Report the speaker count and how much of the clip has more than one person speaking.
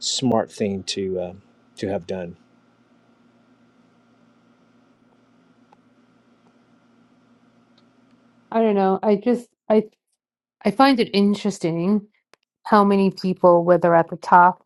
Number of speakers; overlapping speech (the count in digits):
2, no overlap